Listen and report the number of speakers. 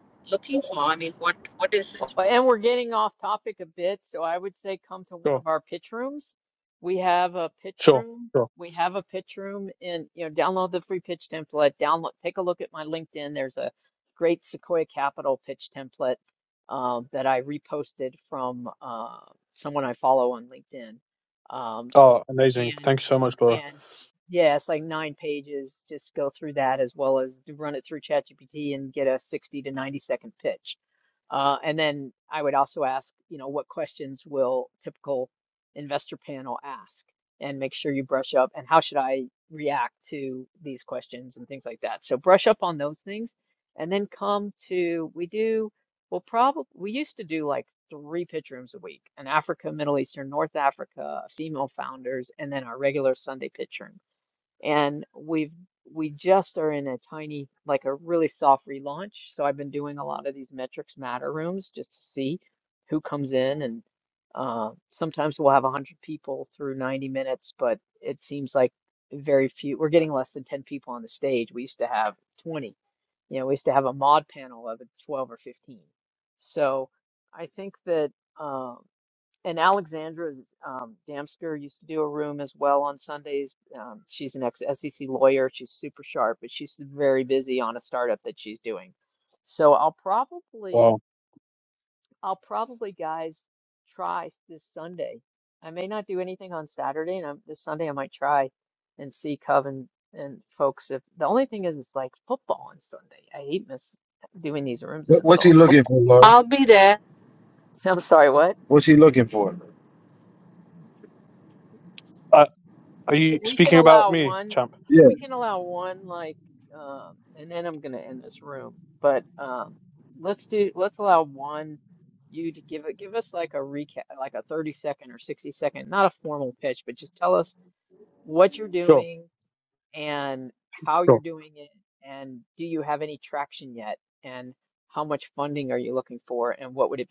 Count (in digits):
4